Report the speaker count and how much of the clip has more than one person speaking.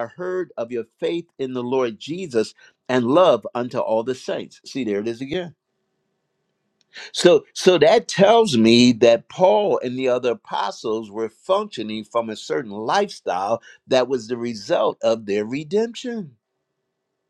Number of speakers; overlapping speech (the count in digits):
1, no overlap